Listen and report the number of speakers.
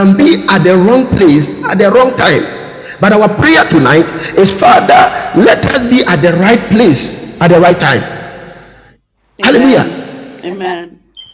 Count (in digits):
2